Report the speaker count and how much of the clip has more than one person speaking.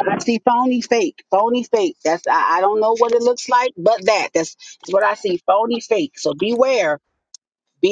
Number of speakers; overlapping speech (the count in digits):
1, no overlap